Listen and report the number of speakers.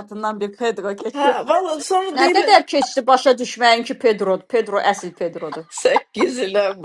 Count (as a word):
three